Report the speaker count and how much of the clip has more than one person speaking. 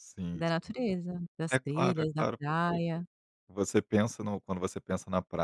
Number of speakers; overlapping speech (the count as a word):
two, about 19%